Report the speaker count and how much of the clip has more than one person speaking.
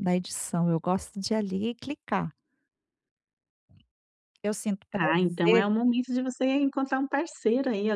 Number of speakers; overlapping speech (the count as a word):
two, about 9%